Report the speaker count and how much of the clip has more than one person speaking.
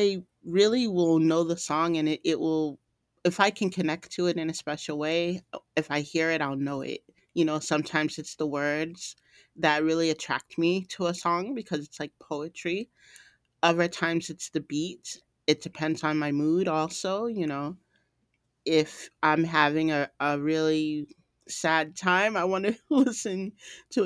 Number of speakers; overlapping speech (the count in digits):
1, no overlap